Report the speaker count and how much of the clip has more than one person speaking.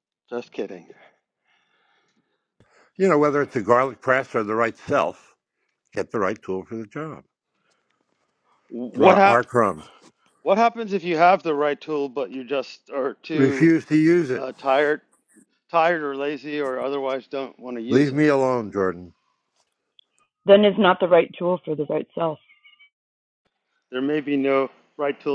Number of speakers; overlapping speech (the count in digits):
3, about 5%